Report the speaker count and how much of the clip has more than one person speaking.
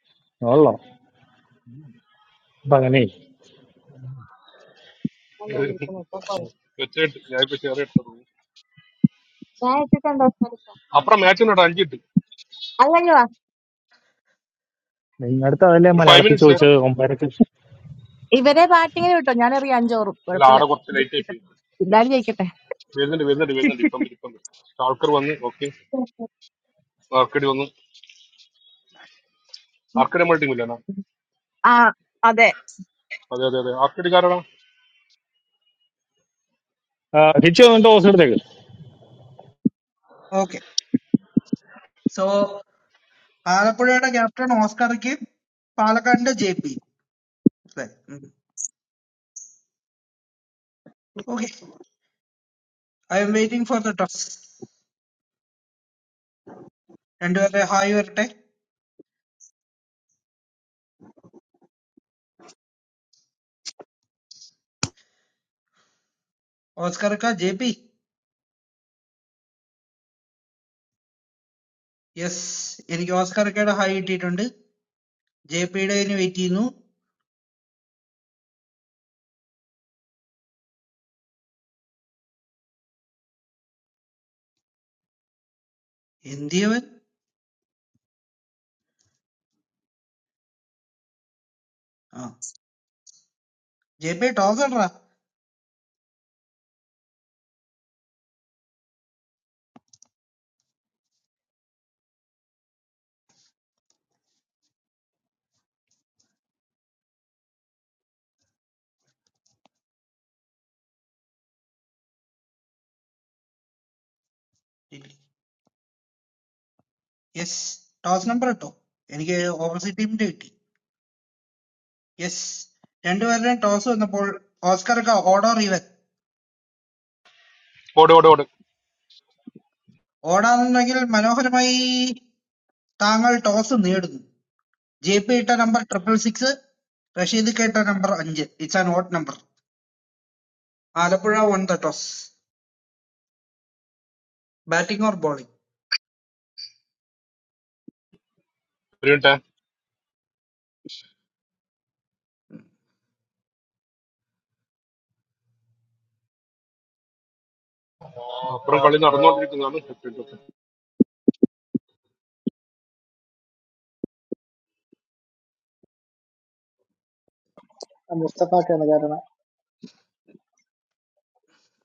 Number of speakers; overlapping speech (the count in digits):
5, about 1%